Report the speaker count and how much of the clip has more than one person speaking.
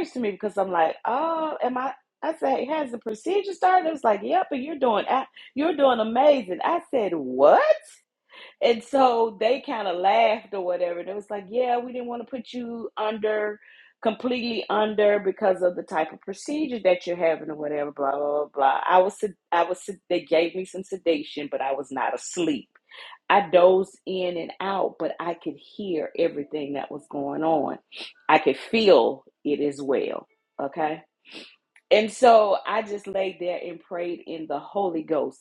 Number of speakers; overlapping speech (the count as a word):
one, no overlap